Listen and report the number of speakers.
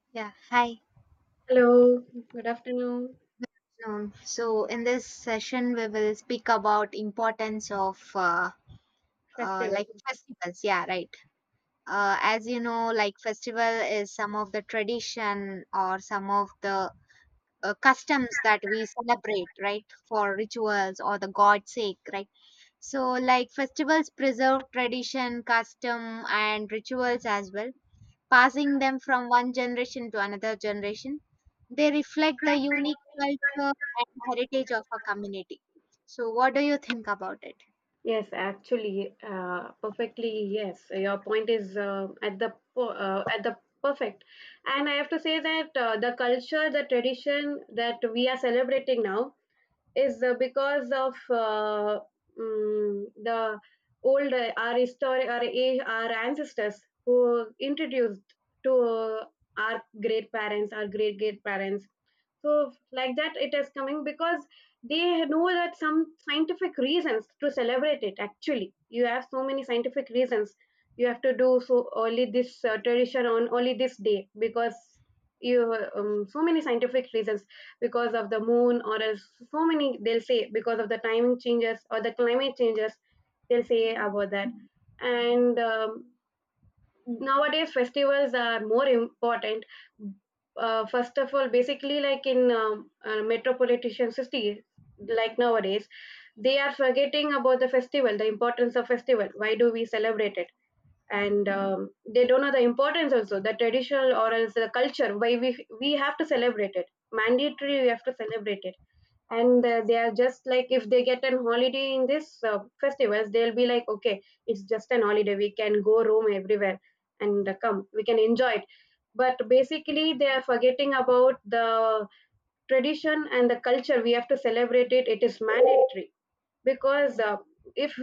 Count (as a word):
two